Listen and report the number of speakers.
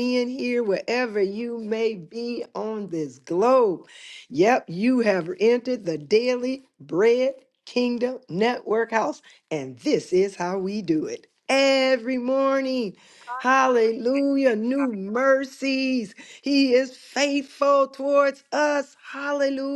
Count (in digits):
1